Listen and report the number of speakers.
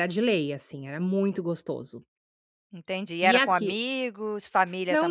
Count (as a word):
two